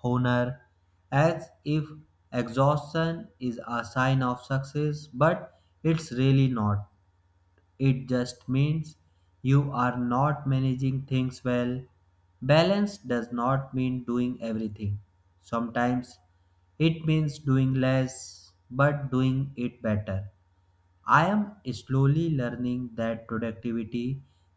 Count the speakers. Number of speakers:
1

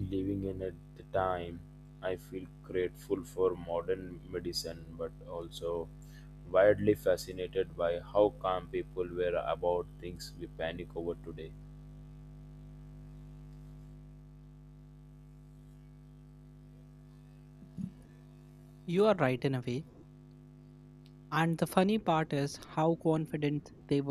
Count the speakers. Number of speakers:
2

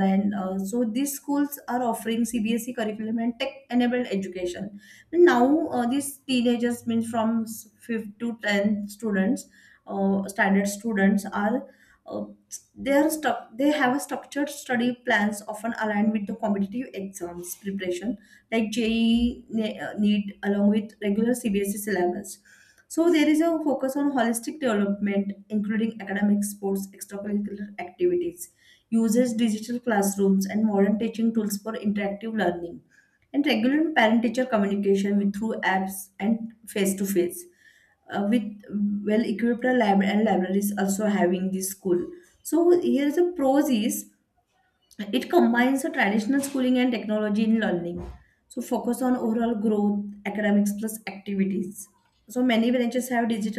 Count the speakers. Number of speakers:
1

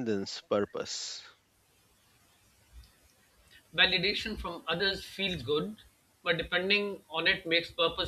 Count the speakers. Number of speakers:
2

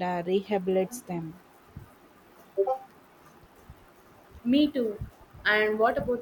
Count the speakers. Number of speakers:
2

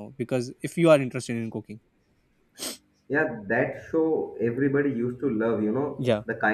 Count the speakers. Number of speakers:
2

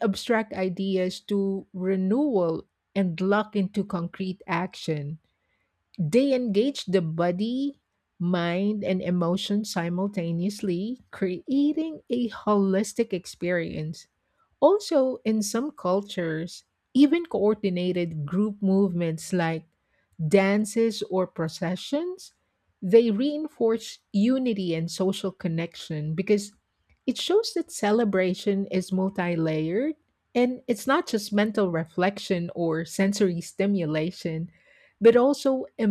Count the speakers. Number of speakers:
1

